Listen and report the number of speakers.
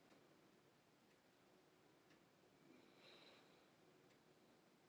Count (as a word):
zero